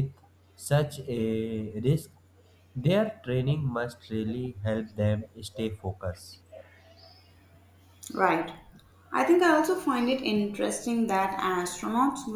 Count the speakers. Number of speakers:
2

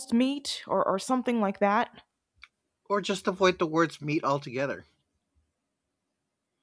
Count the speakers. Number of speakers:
2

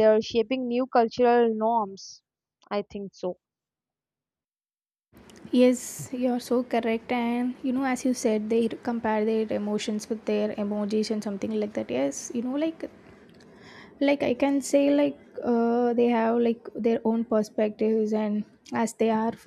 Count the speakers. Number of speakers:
2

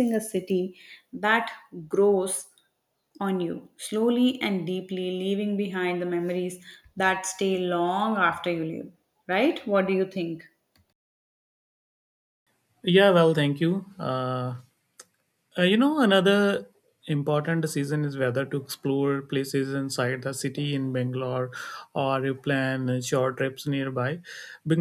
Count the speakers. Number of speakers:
2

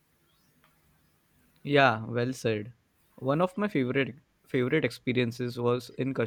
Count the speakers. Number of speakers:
1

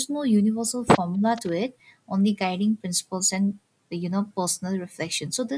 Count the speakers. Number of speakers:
1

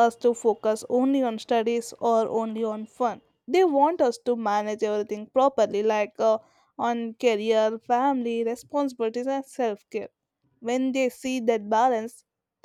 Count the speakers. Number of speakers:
1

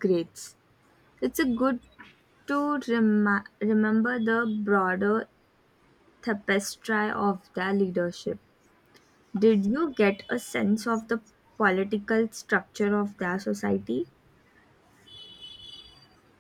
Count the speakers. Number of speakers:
1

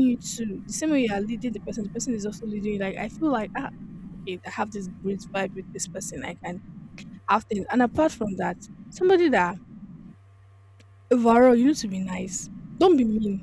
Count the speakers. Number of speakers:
1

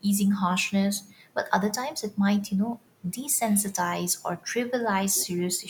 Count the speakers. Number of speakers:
1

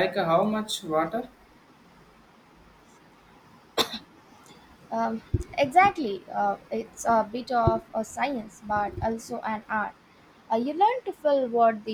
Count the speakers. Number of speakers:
2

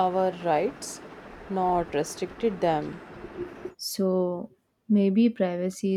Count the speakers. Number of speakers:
2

